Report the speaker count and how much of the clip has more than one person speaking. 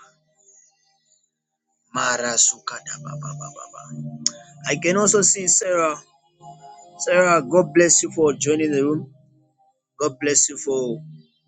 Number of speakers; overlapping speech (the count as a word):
one, no overlap